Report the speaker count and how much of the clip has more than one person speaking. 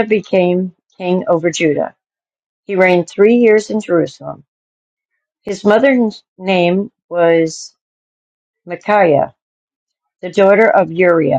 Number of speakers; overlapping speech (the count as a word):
one, no overlap